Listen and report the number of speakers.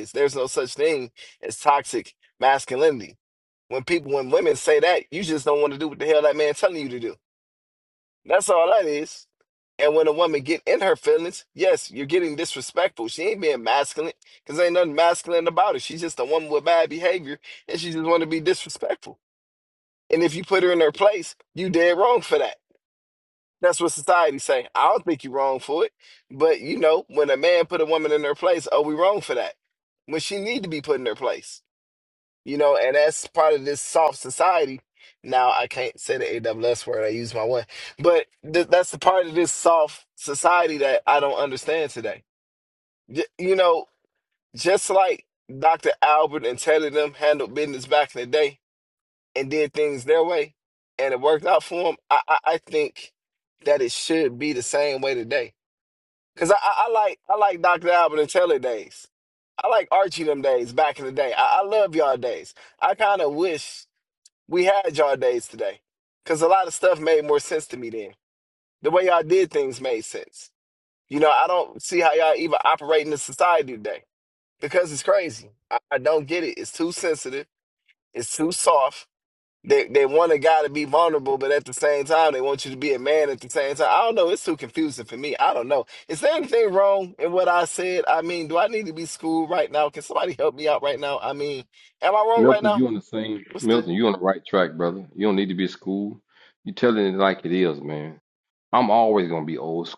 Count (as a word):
two